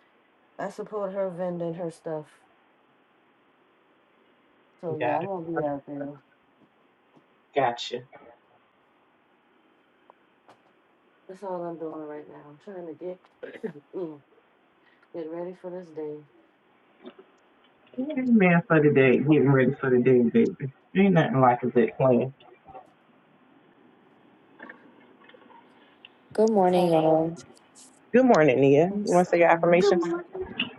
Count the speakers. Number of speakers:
three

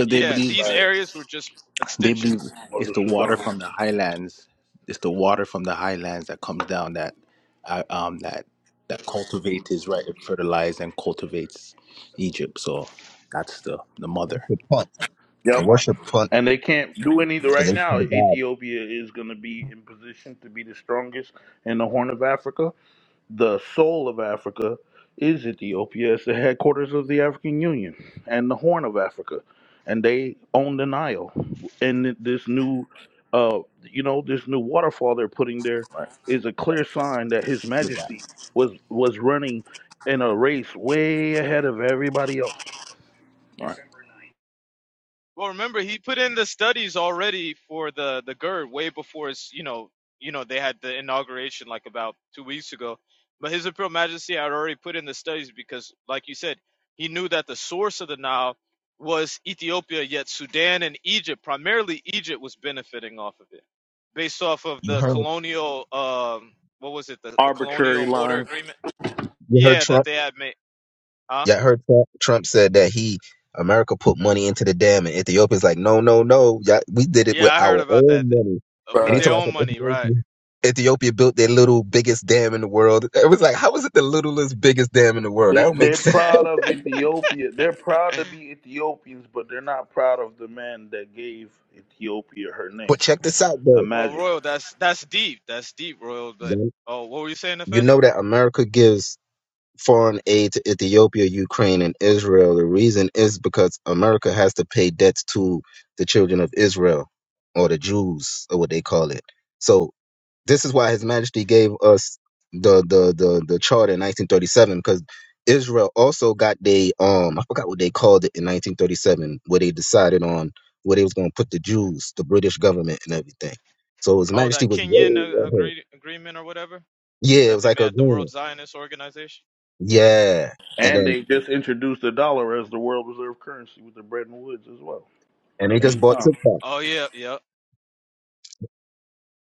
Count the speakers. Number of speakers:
four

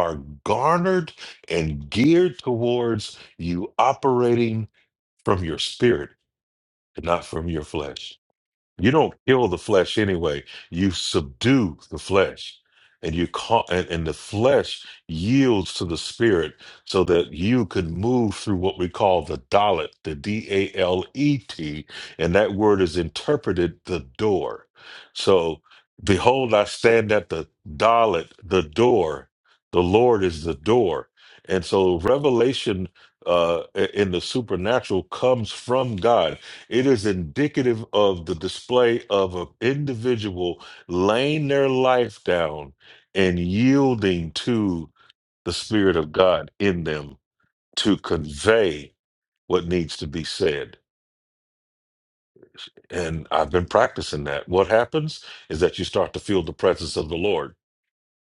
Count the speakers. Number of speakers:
one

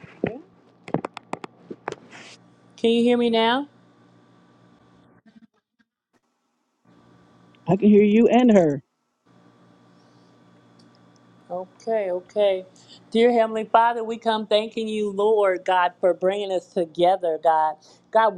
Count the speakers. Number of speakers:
two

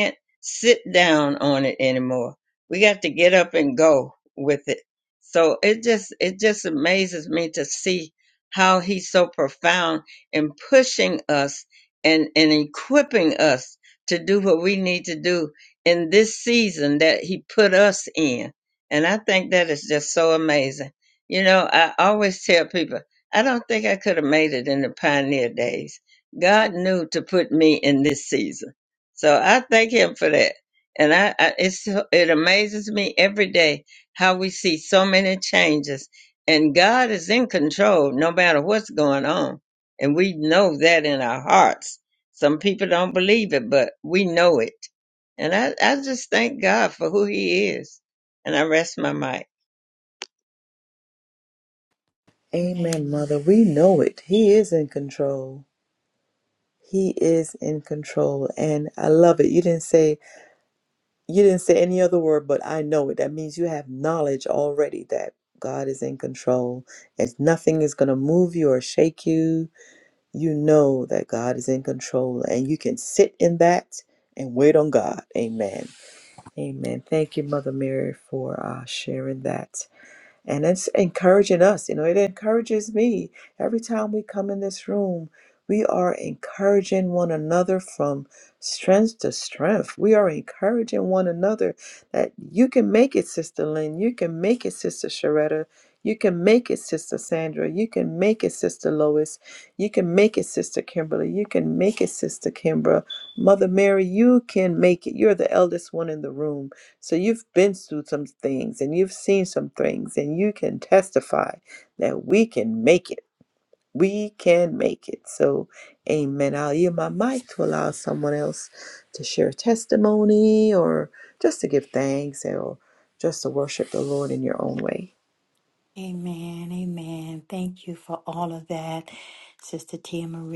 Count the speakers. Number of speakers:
three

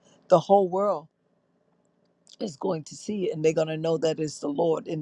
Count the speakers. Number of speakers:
one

